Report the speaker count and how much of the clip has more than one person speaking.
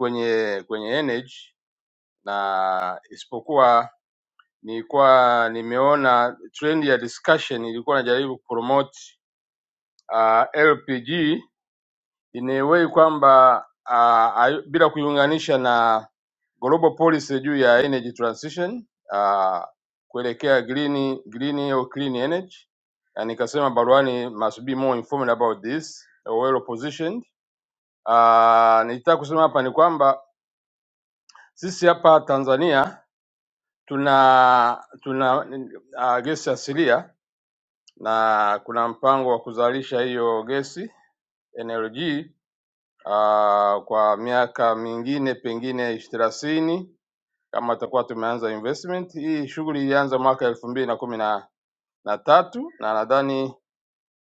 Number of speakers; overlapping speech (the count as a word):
one, no overlap